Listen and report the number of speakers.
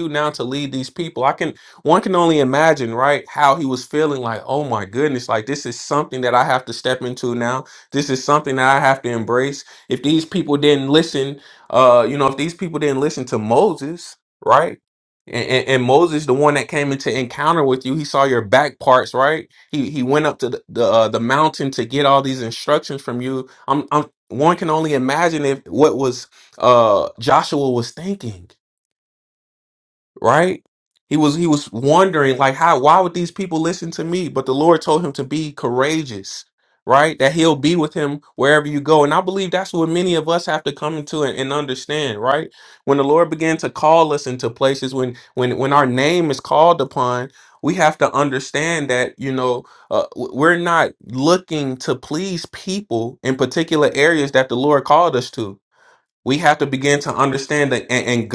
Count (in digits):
1